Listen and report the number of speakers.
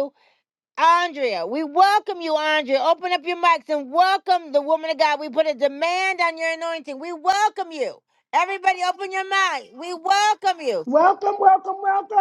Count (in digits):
2